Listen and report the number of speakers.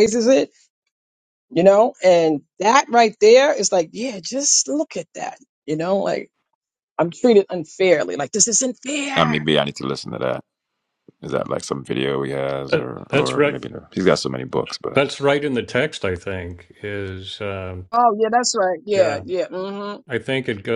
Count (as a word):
three